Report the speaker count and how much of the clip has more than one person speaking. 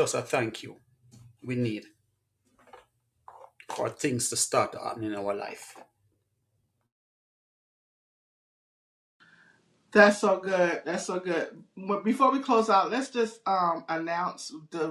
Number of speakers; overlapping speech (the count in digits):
2, no overlap